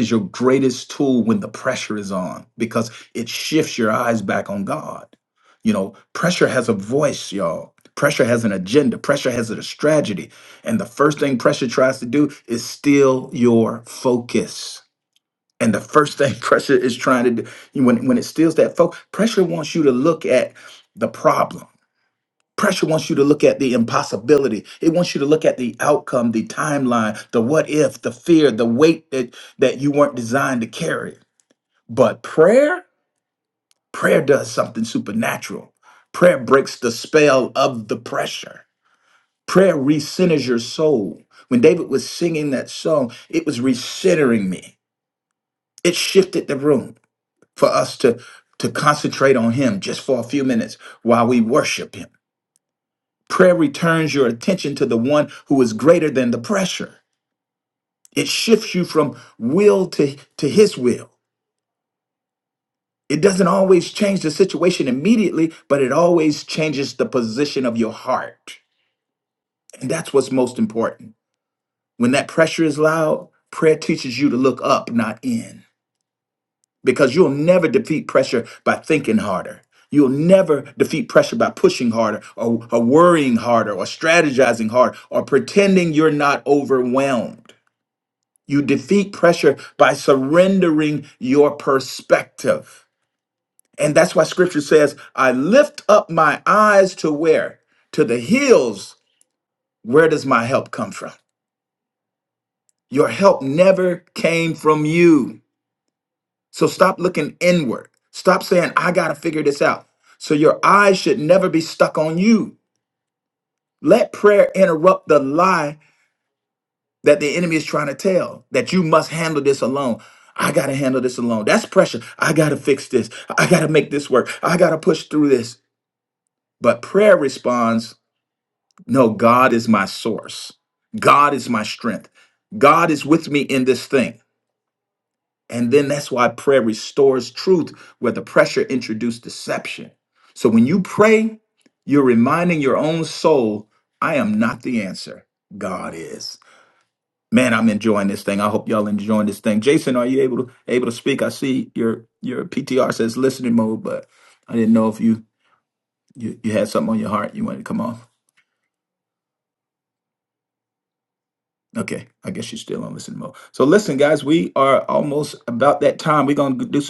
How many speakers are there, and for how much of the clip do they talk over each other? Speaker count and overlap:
1, no overlap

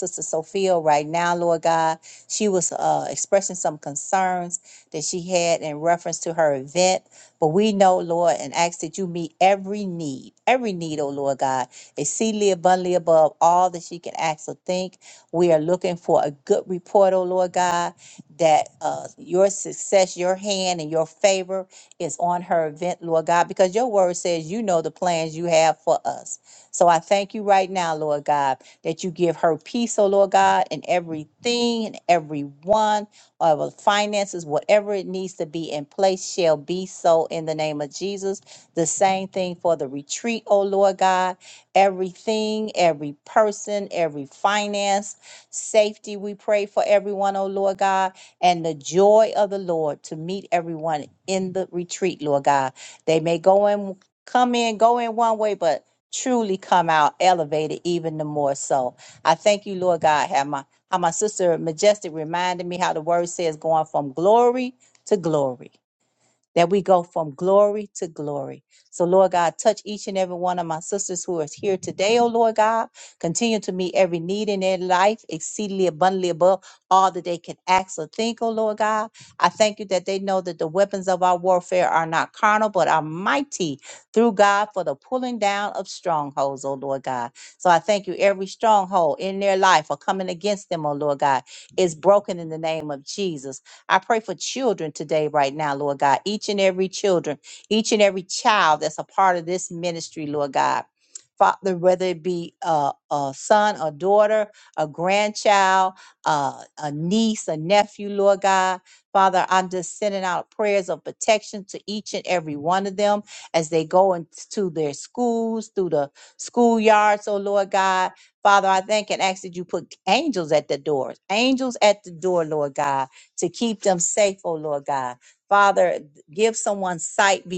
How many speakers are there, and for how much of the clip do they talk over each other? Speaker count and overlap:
1, no overlap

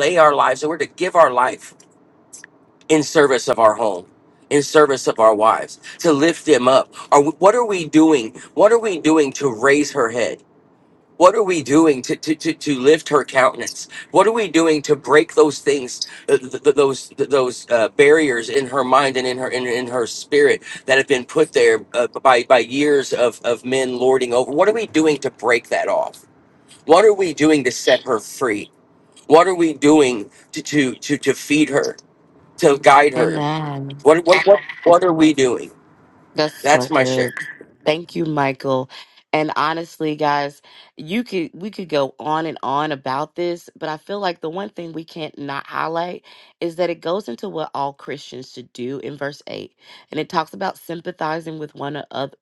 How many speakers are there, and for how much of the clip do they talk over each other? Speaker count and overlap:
2, about 2%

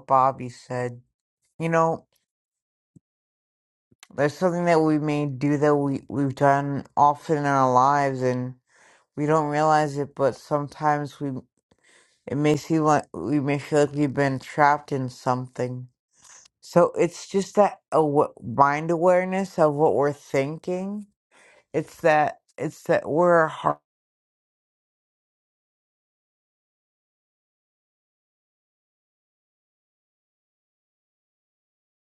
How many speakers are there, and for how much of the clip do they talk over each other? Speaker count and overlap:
1, no overlap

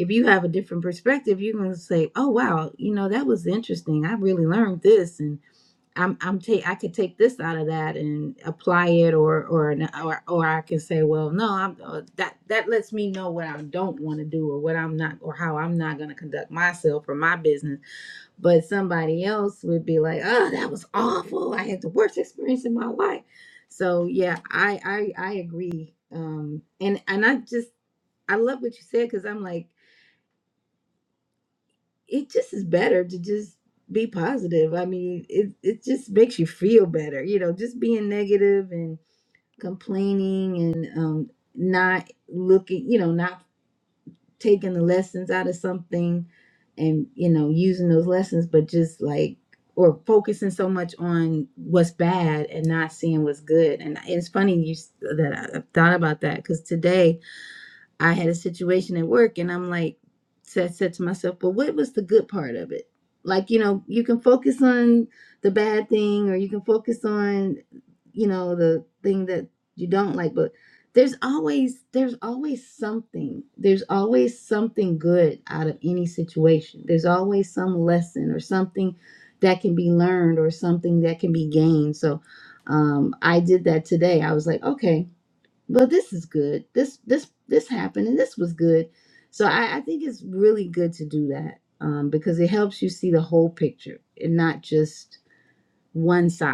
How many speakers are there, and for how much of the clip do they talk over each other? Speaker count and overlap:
1, no overlap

